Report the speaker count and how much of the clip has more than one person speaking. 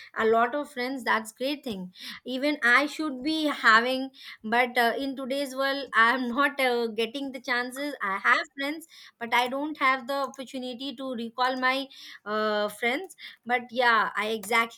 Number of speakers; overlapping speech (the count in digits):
1, no overlap